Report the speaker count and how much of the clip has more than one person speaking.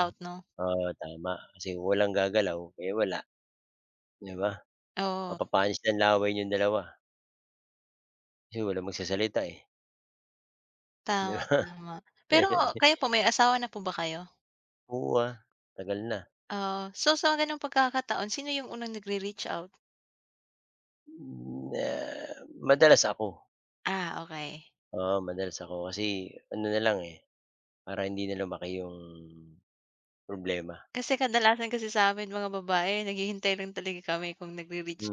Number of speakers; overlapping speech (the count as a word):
two, about 3%